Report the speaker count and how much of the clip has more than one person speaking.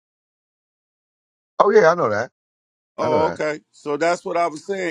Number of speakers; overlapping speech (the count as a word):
two, about 7%